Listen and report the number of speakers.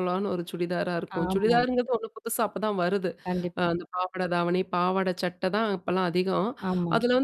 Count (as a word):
two